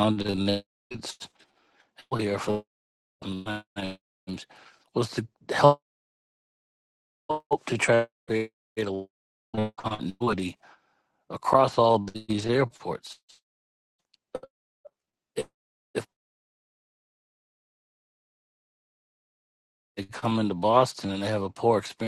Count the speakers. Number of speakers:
1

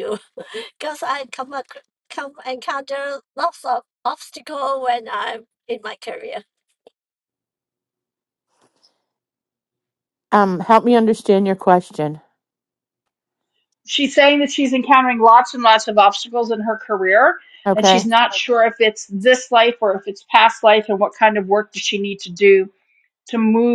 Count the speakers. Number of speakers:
3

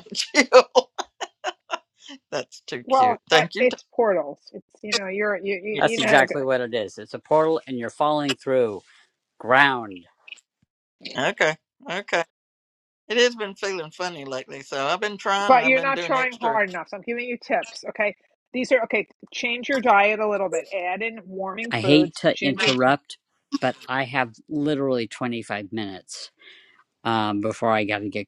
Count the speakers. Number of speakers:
3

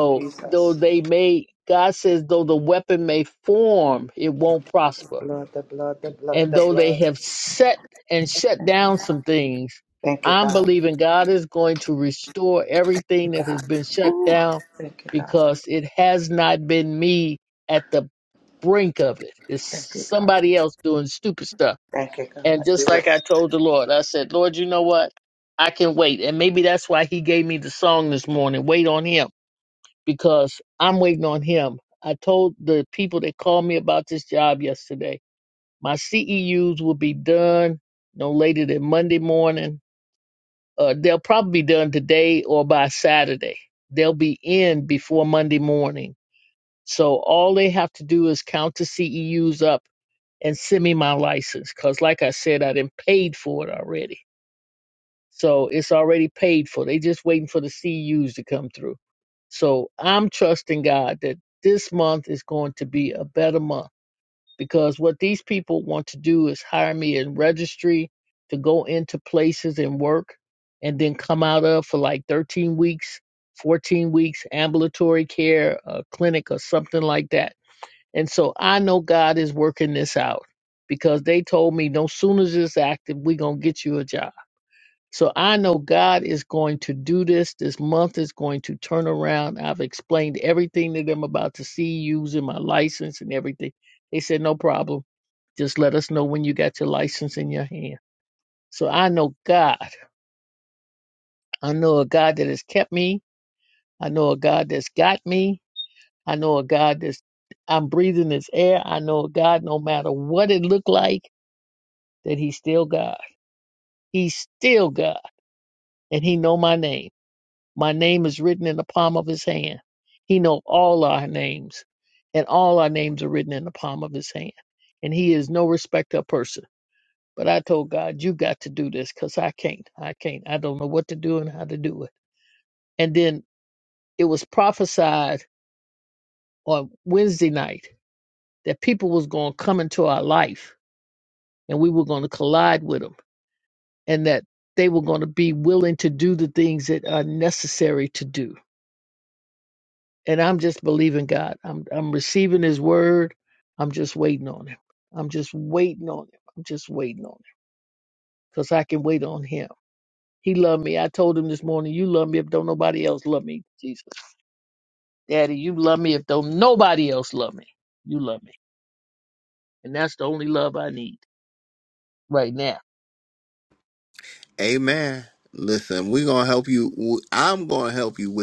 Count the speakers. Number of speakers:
3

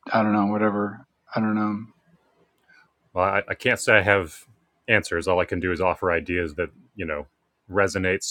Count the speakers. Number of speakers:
2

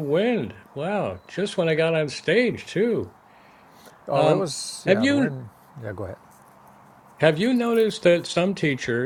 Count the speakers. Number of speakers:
2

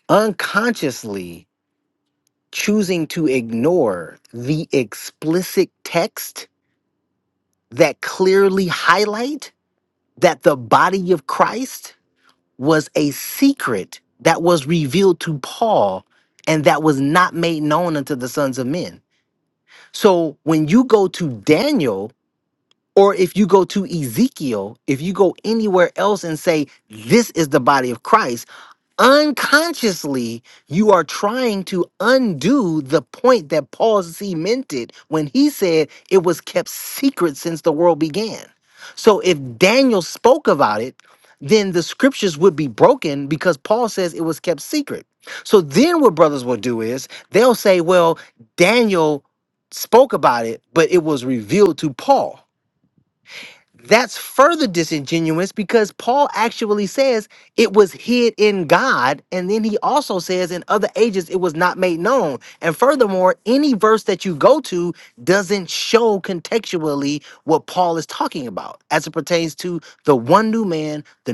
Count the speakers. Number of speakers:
1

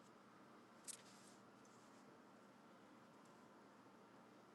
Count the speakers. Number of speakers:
0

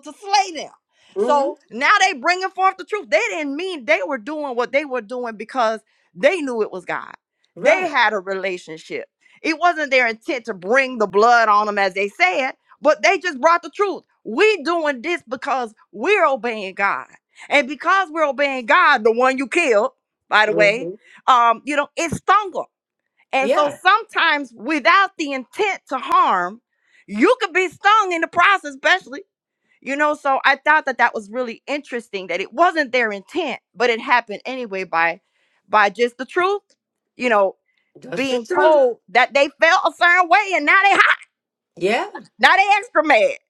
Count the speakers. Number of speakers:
2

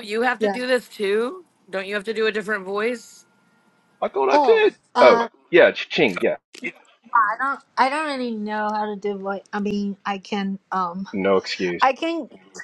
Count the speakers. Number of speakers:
3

